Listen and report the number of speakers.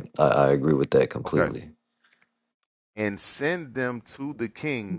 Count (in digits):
2